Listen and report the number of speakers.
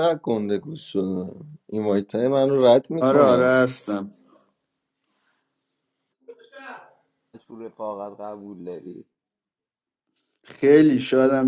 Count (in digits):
3